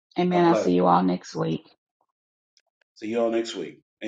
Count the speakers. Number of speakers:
2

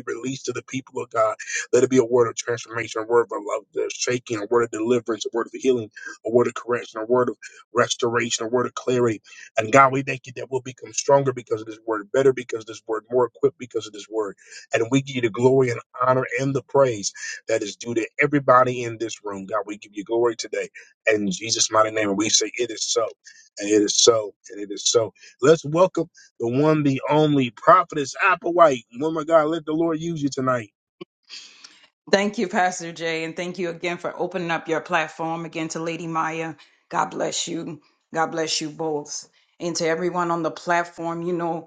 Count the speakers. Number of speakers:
2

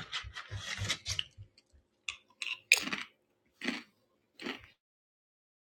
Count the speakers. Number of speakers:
0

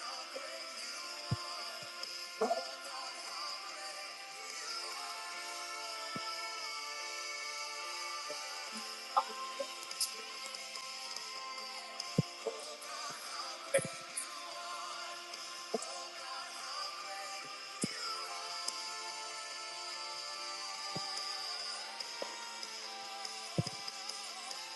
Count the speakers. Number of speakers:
0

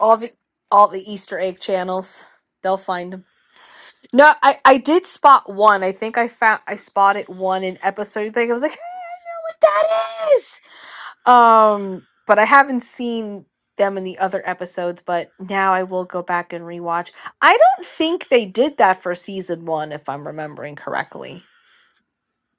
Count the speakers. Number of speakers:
1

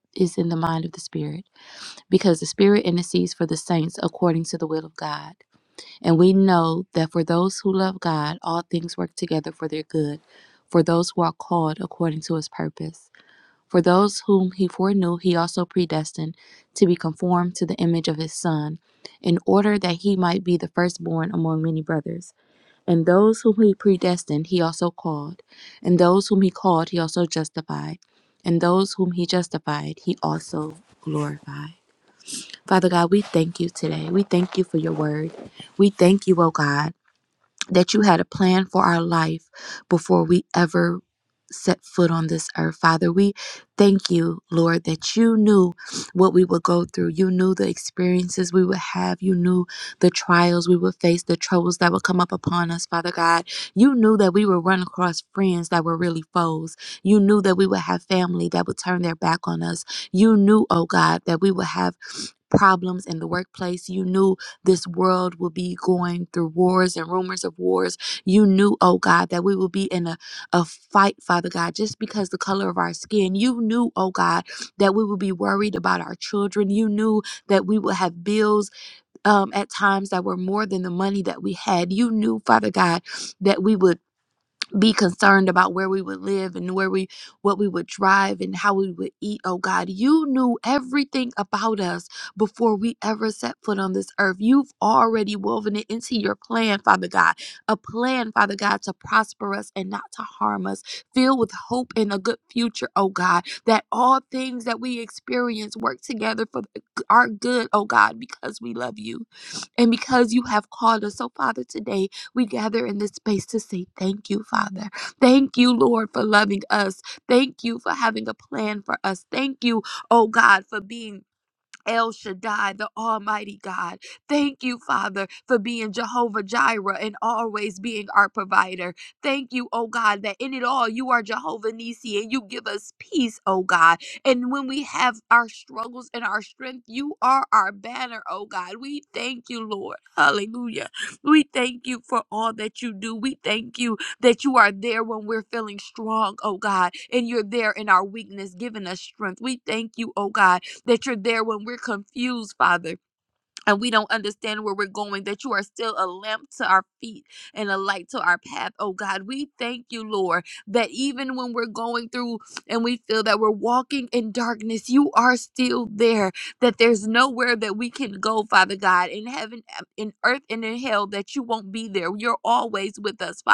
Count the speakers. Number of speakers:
1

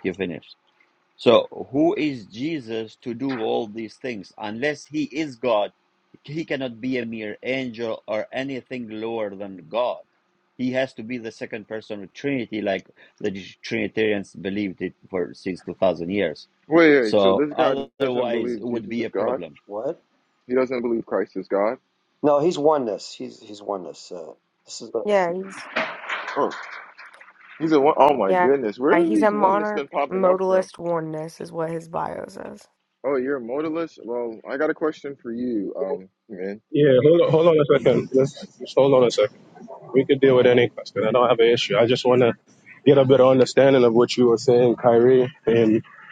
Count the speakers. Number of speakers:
5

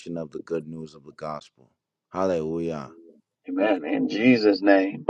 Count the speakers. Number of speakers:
2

